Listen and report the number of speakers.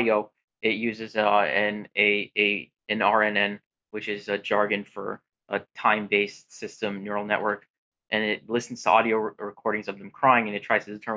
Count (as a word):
one